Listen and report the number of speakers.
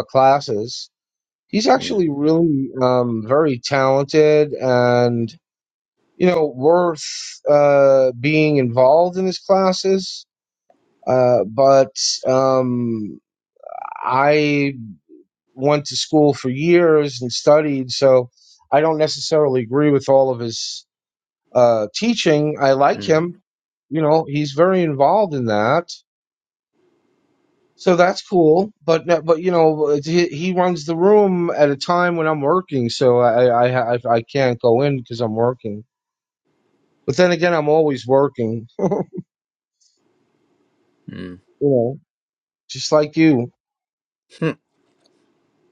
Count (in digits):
2